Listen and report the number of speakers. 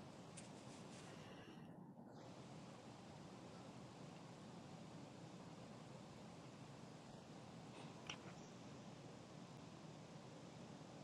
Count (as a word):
zero